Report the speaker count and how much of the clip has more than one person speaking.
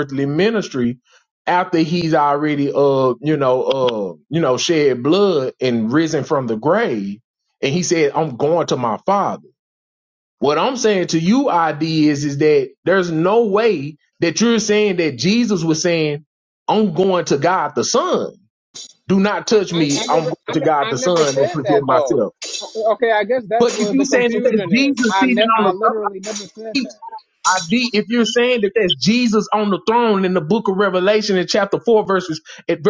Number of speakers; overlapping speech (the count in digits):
2, about 14%